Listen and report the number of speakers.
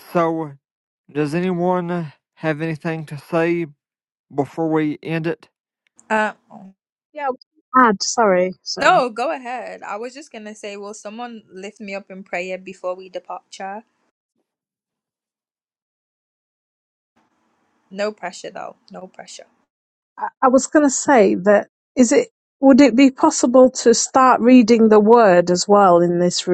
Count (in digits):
3